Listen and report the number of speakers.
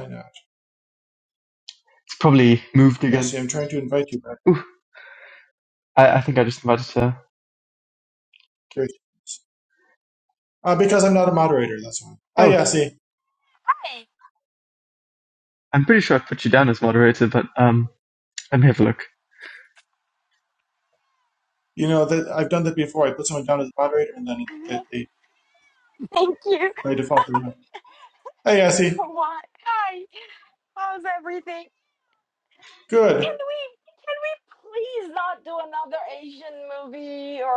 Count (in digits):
3